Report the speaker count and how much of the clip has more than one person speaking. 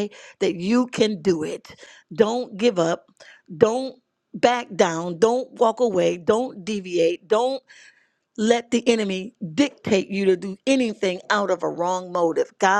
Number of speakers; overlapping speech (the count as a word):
one, no overlap